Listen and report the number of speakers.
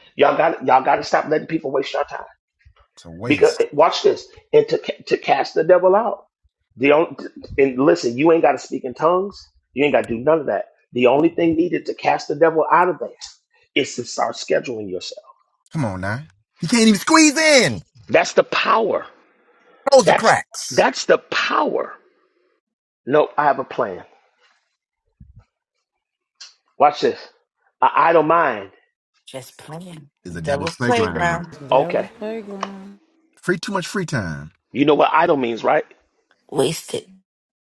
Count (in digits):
4